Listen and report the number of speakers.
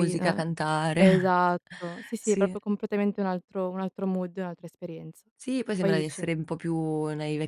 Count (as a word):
two